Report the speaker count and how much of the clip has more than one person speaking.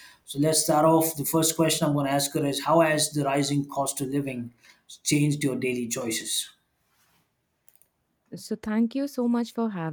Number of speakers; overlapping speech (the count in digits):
2, no overlap